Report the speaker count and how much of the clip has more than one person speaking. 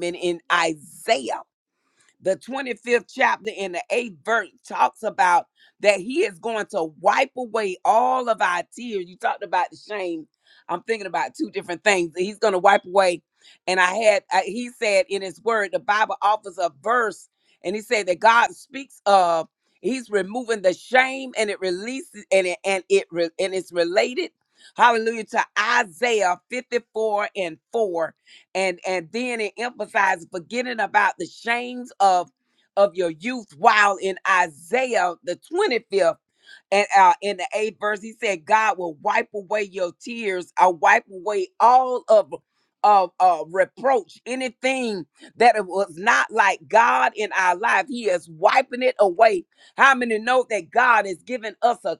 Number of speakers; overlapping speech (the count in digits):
1, no overlap